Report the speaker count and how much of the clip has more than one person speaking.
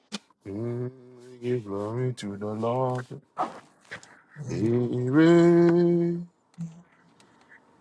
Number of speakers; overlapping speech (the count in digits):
1, no overlap